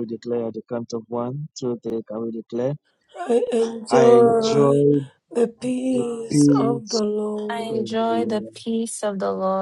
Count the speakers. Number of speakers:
three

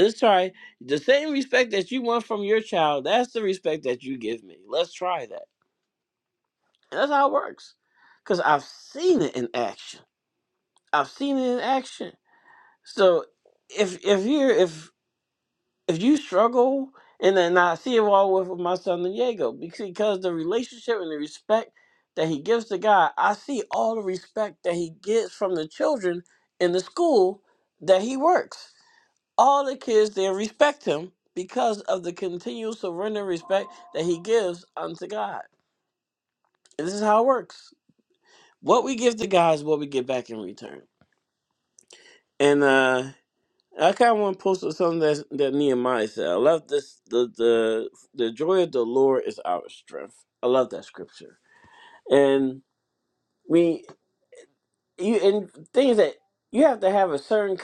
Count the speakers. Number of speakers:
one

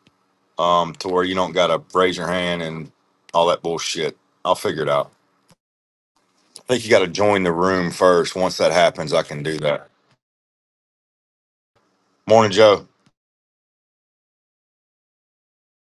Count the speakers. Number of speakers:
one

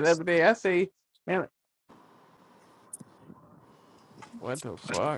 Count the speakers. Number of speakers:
one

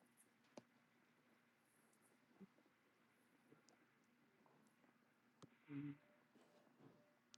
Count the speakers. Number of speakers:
zero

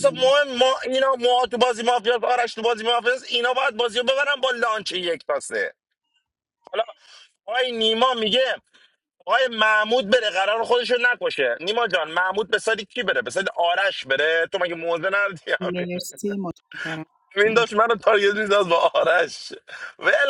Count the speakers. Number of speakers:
two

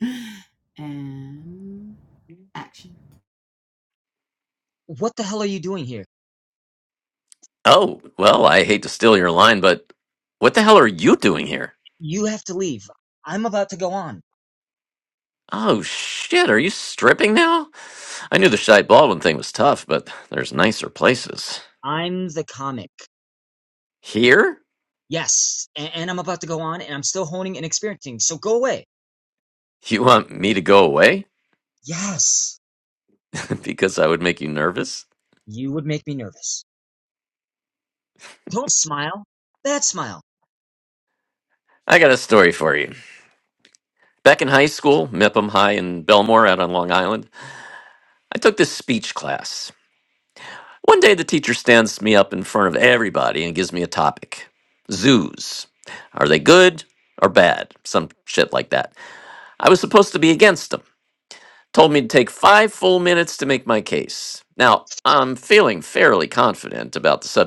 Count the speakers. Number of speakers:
three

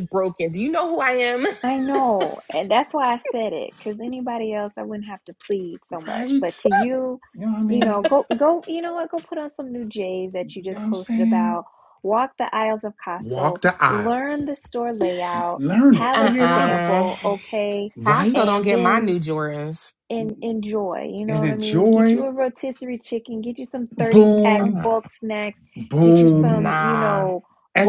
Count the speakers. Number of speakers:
three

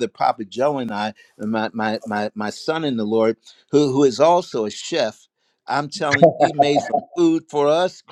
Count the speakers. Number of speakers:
one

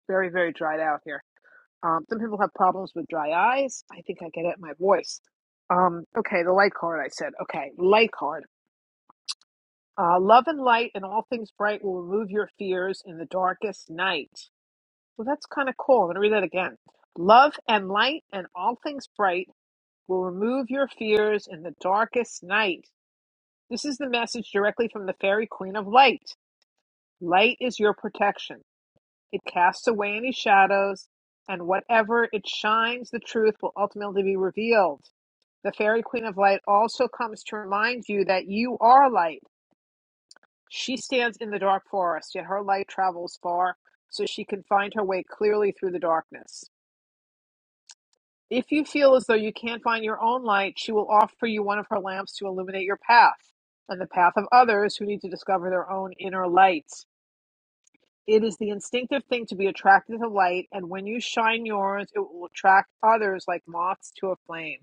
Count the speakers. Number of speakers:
one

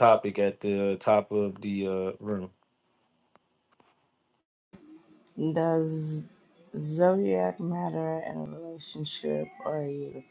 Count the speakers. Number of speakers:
two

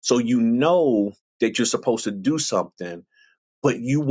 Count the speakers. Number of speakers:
one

